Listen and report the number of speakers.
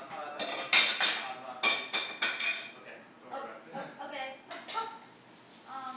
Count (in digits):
2